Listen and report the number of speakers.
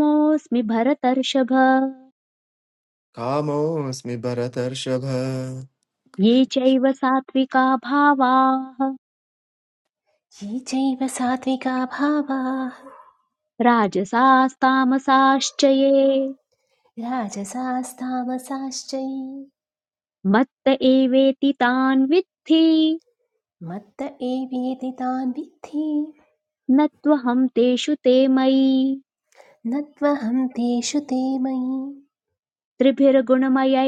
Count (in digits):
3